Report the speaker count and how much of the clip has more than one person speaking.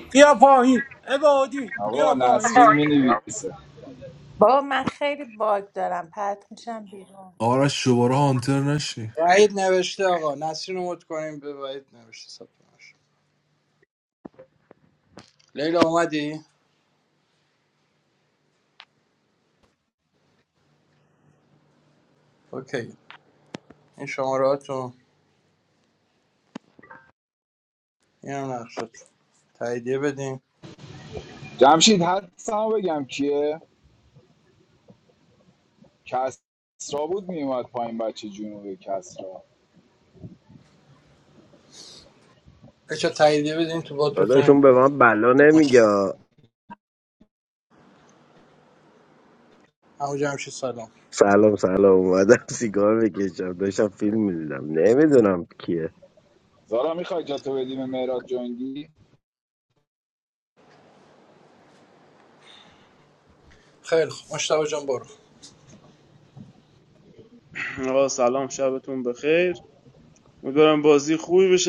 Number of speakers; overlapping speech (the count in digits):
7, about 2%